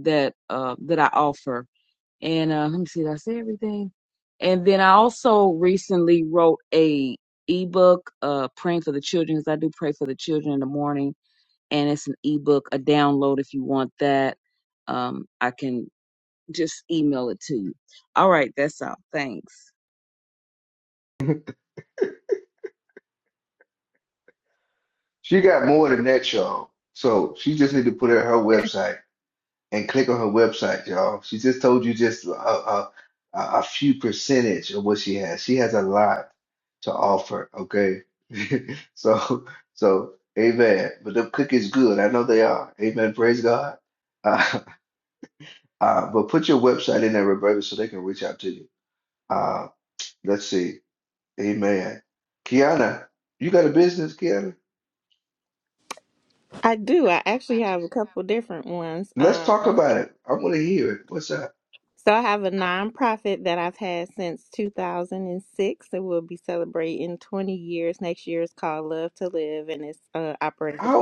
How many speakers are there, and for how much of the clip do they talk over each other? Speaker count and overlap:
3, about 1%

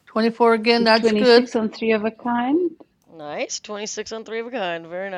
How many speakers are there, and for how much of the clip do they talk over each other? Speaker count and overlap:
3, about 10%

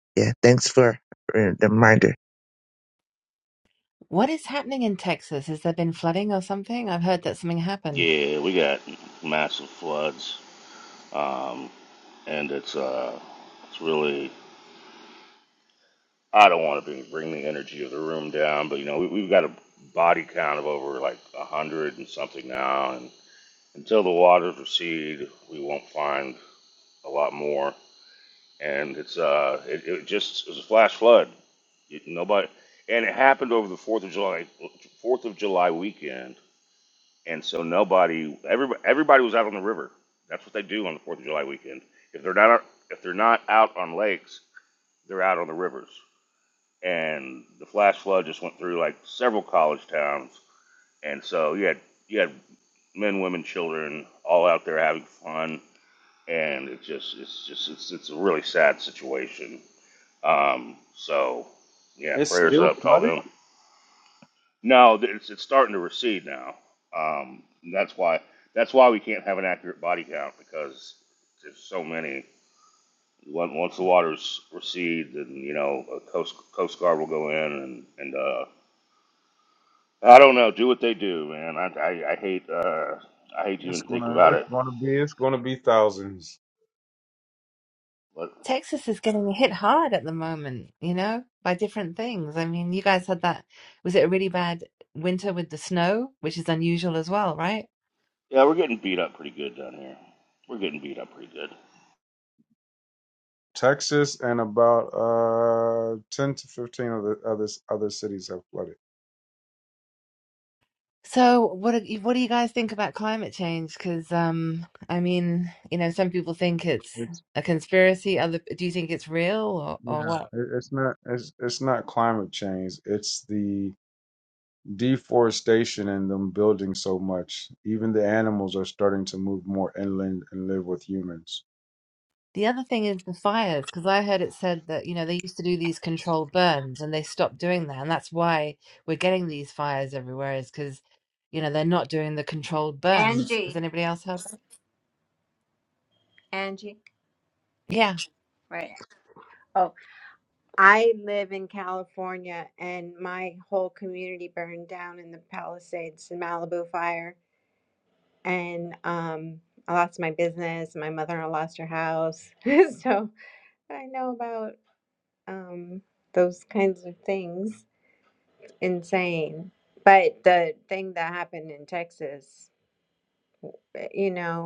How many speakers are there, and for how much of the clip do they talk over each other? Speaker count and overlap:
5, about 2%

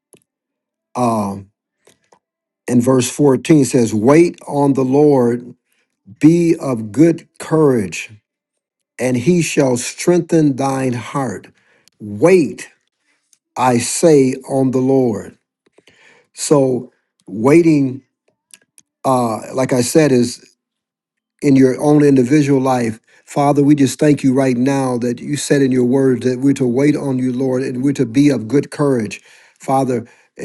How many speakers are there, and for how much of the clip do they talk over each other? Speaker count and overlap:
1, no overlap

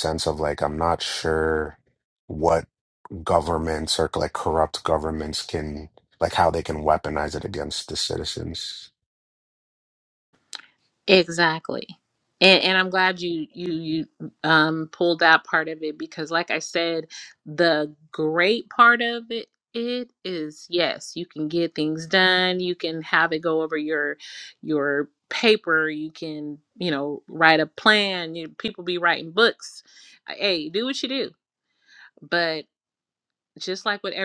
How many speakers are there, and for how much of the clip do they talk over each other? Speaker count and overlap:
2, no overlap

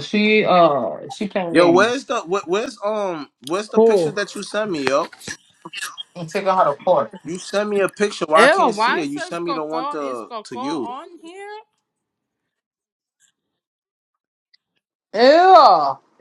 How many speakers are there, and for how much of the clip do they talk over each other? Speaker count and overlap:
3, about 21%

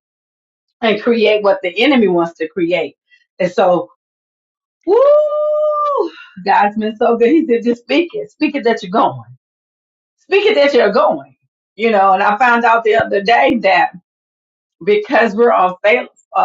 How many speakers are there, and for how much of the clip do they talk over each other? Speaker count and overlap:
1, no overlap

